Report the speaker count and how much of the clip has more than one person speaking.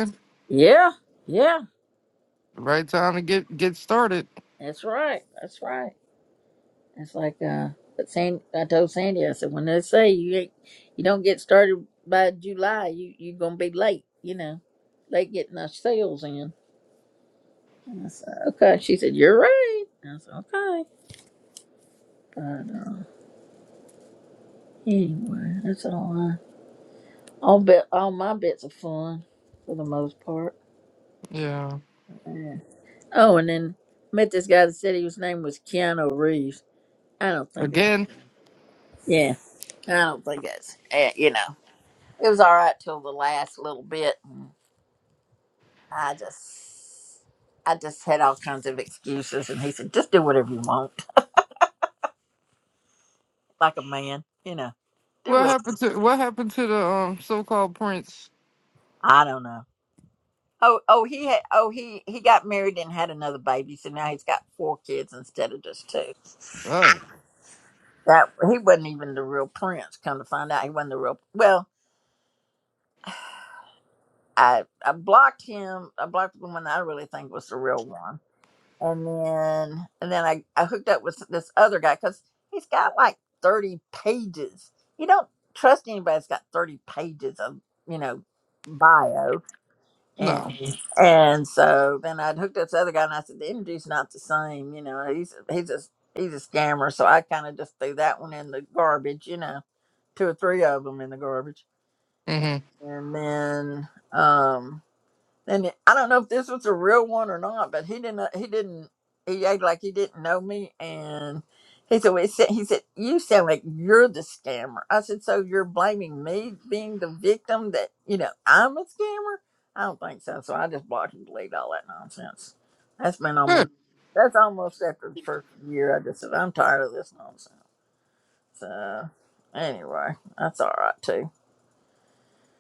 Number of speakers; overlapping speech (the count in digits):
2, about 1%